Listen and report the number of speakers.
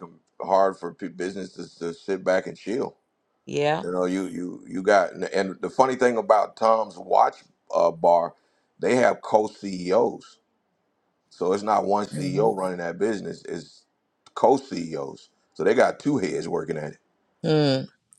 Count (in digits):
2